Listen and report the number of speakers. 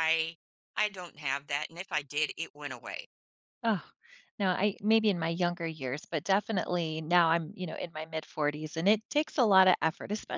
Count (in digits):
2